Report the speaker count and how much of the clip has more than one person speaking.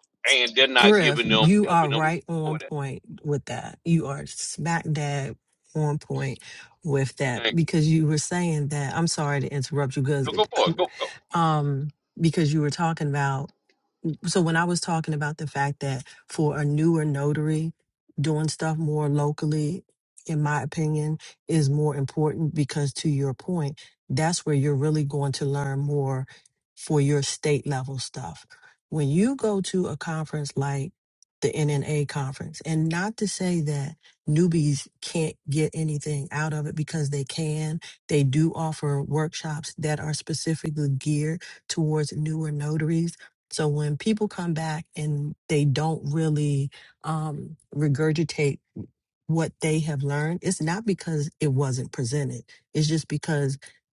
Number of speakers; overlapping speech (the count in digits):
2, about 3%